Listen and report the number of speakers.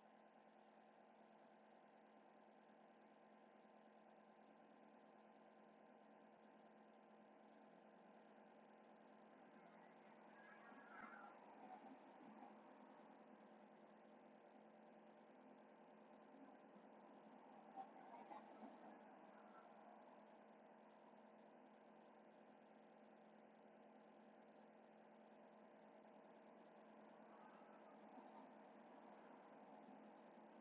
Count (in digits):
0